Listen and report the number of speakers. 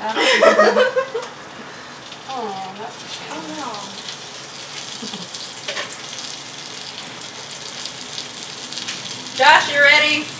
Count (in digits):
2